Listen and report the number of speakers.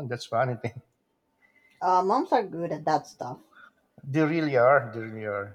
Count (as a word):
two